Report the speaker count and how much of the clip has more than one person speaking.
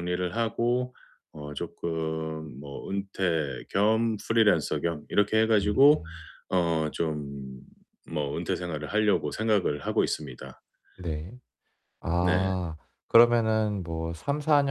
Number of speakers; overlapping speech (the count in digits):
2, about 4%